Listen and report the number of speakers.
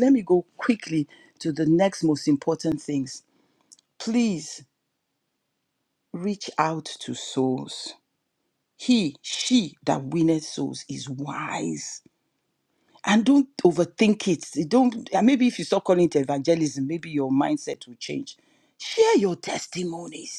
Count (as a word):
one